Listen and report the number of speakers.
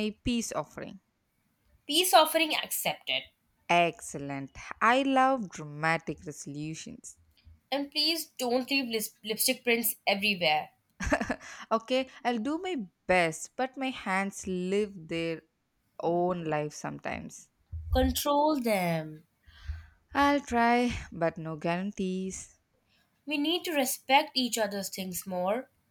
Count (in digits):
2